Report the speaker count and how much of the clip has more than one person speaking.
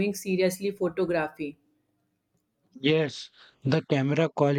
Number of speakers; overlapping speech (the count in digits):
2, no overlap